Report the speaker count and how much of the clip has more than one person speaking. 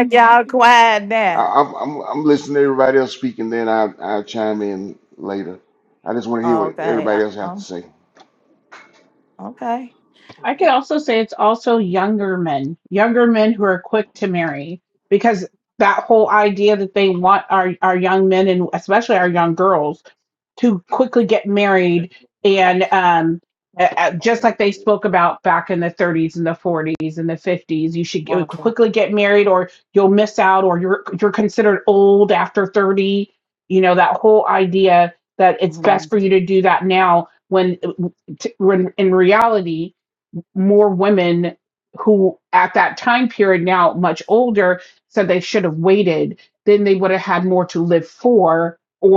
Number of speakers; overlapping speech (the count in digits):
3, about 4%